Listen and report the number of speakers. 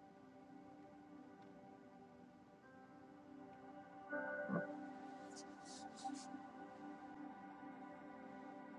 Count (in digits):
0